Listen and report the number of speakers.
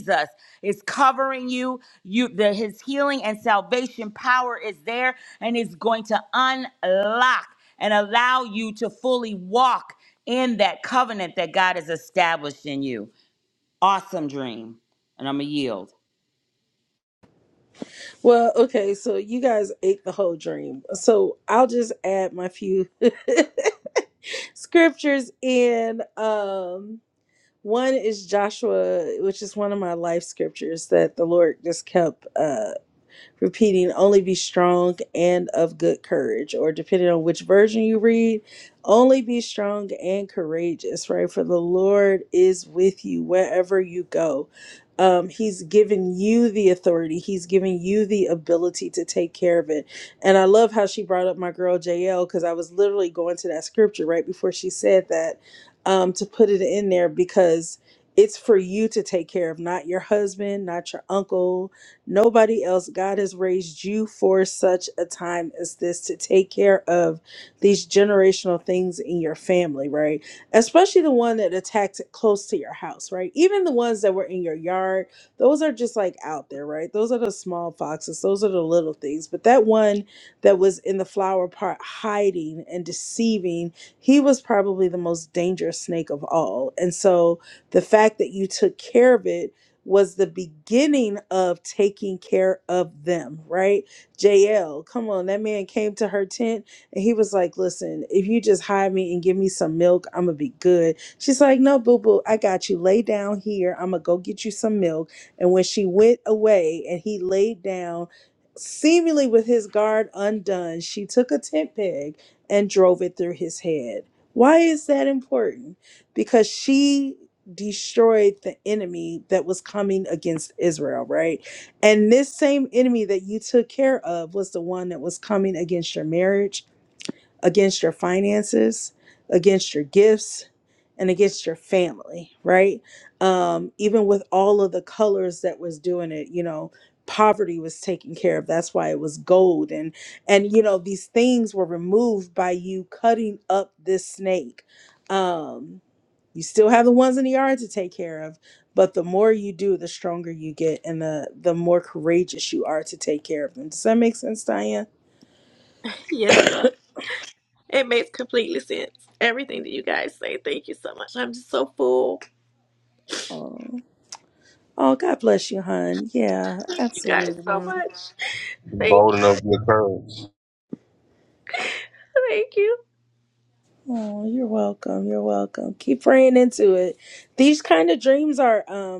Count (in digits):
4